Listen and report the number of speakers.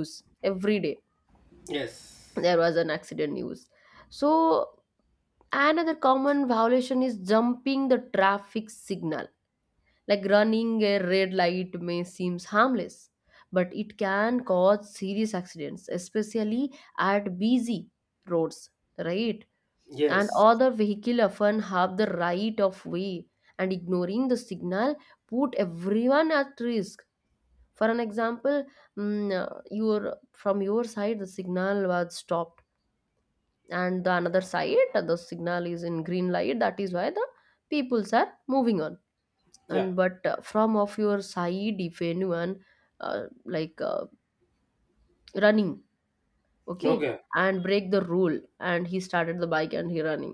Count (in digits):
2